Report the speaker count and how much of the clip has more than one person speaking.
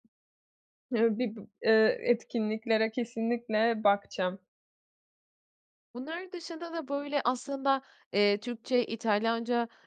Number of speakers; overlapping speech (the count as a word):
two, no overlap